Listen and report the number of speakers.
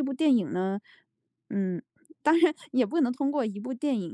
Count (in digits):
1